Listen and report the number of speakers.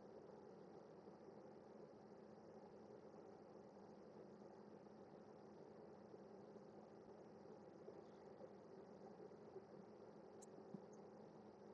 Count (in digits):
0